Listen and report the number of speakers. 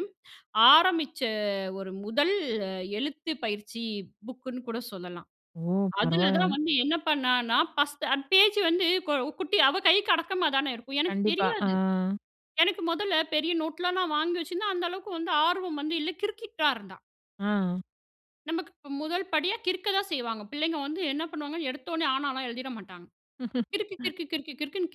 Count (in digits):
2